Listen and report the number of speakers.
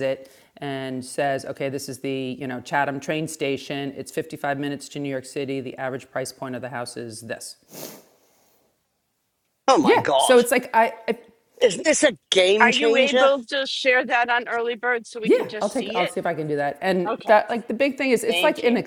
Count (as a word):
three